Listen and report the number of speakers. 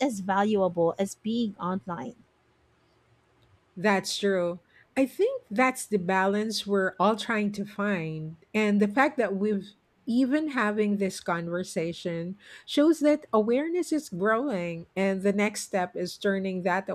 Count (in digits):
2